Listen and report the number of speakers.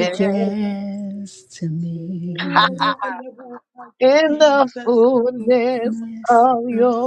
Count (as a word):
three